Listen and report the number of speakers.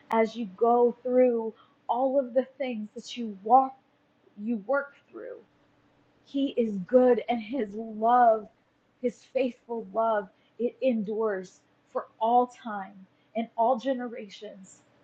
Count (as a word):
one